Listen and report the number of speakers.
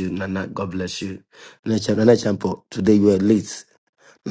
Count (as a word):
one